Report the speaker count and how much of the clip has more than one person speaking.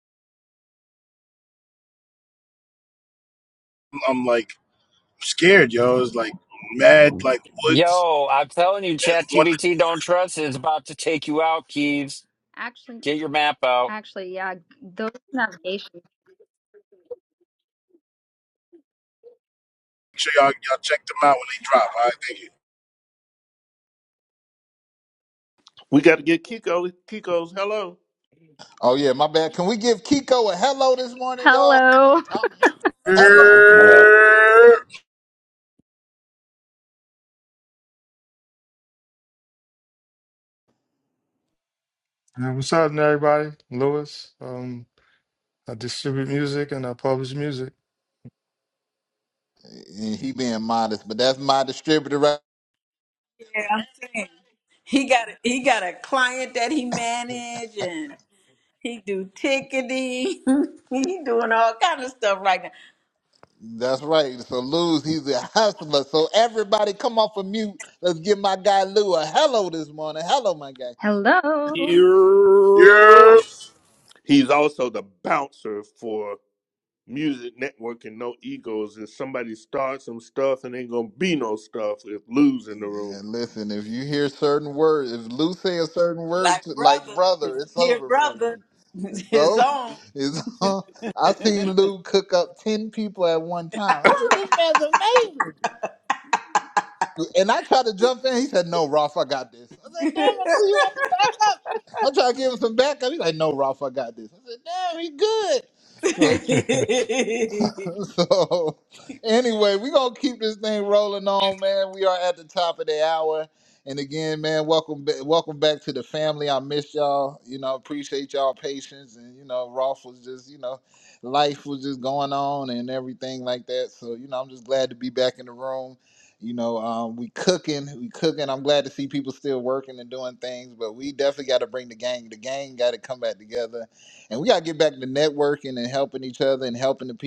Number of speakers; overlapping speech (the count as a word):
eight, about 3%